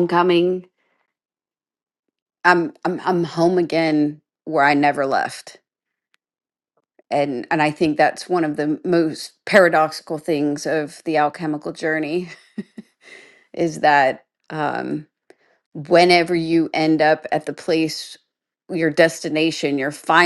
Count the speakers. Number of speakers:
one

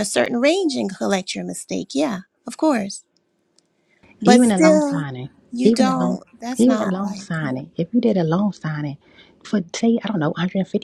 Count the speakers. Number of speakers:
two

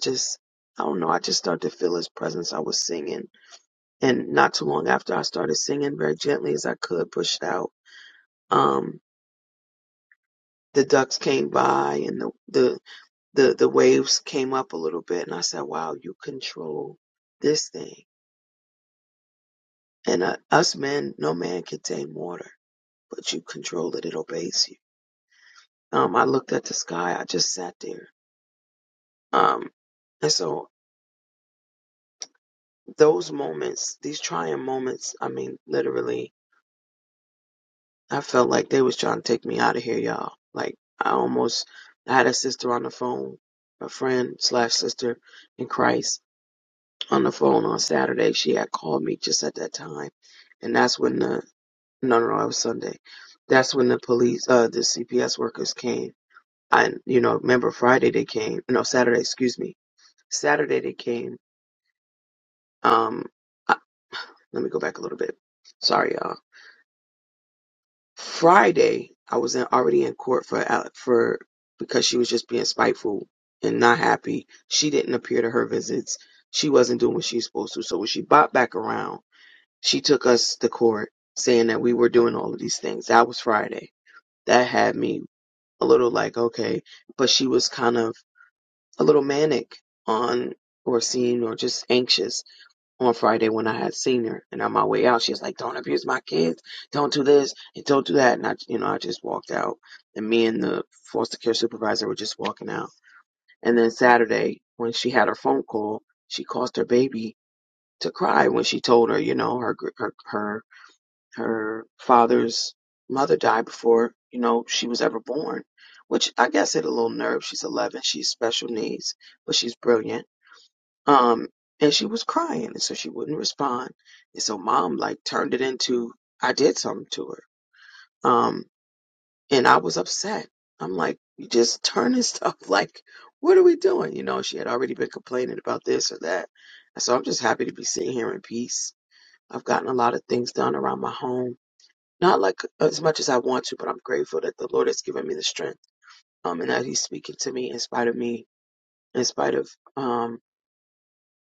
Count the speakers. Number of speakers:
one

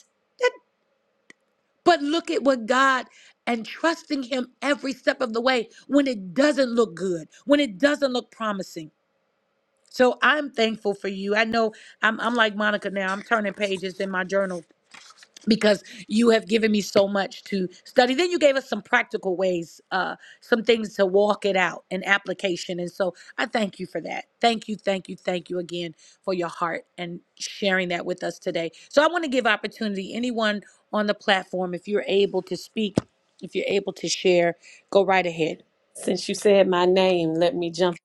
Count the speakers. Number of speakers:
two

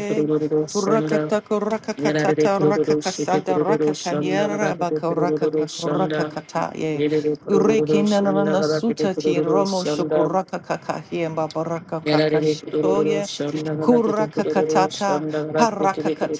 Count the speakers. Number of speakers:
two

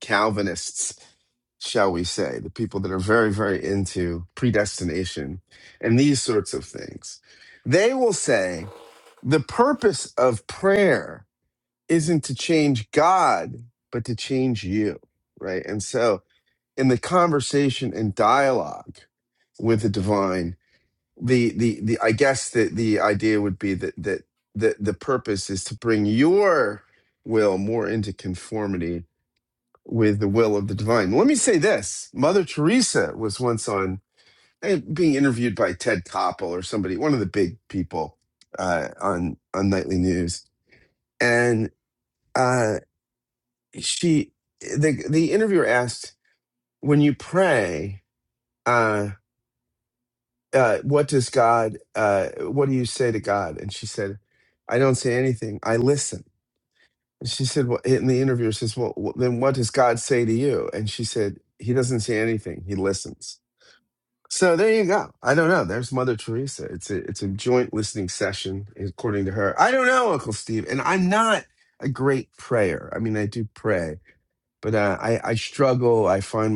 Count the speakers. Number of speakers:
one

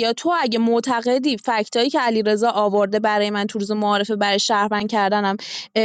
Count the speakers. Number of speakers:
one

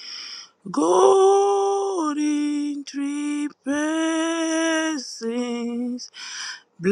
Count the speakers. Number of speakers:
one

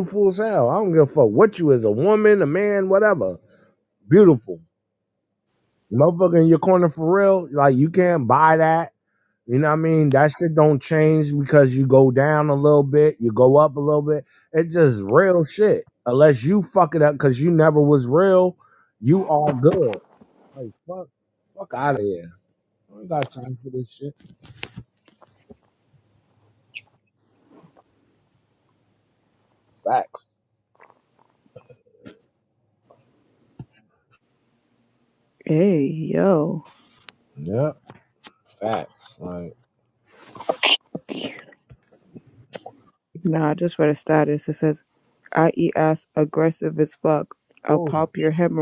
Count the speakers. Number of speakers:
two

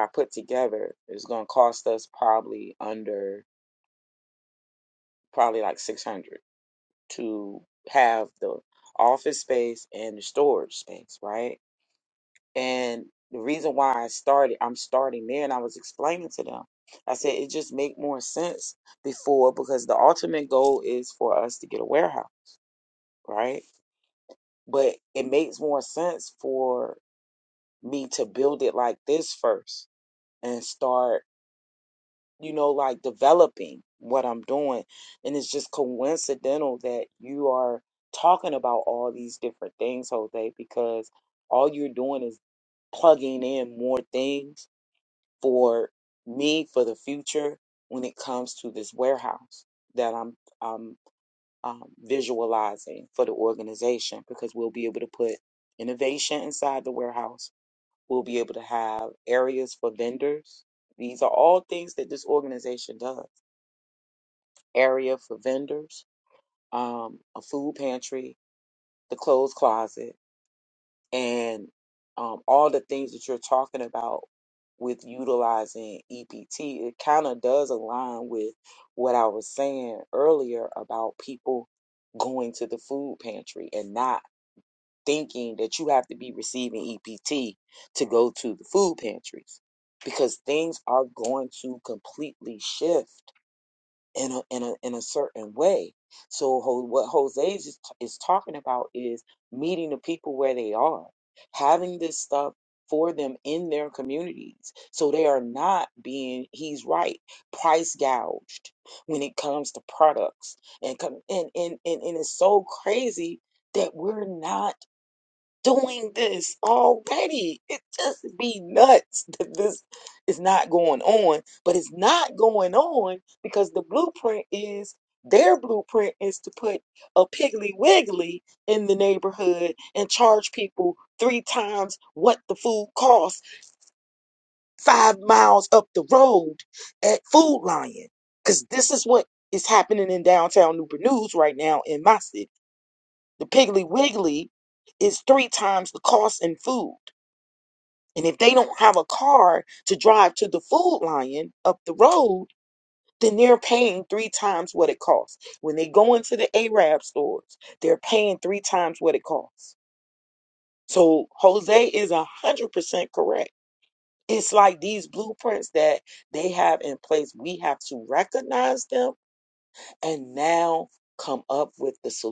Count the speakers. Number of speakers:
one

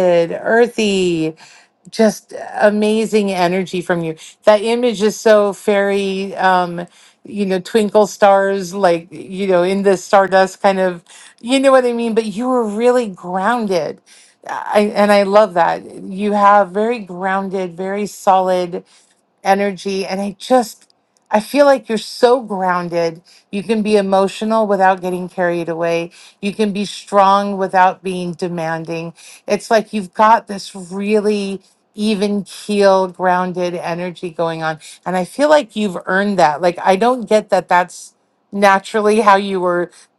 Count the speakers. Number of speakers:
one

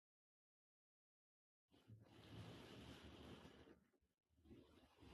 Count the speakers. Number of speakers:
zero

